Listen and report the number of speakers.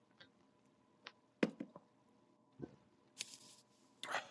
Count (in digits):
0